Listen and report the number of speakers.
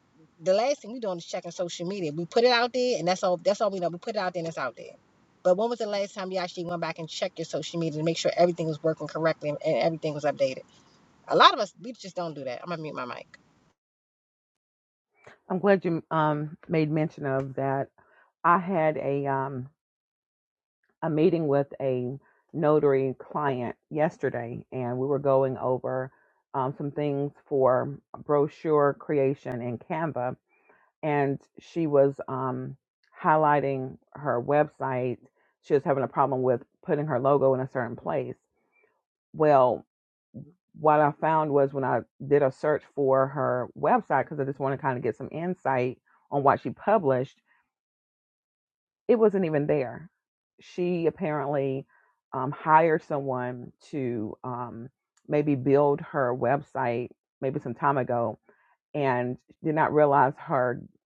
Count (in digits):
2